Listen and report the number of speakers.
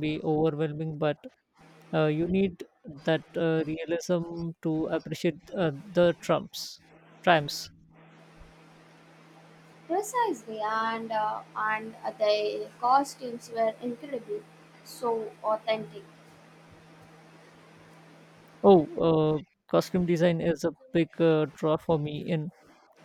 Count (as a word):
two